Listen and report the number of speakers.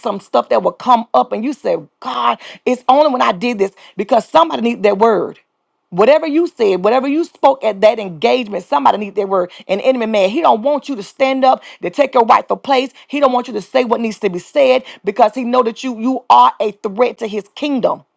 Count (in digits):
1